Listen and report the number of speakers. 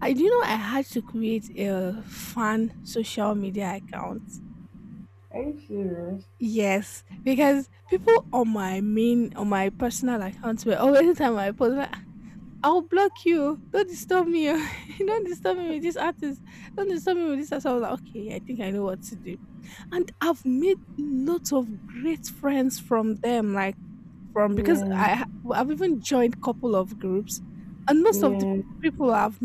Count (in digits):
2